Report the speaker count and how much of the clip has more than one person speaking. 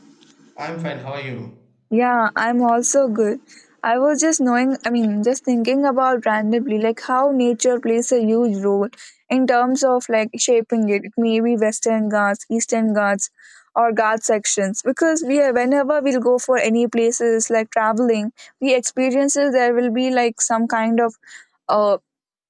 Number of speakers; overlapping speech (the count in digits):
2, no overlap